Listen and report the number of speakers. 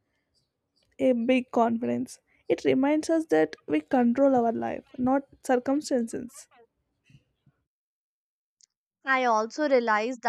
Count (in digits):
2